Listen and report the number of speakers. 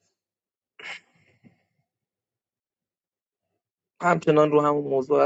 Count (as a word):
one